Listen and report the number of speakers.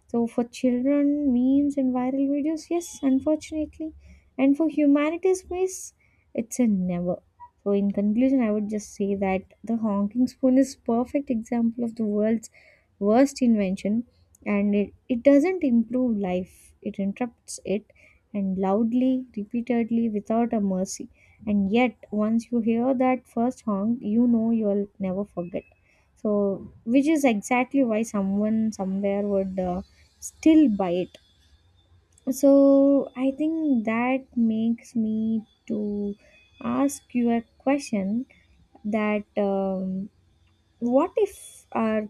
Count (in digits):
1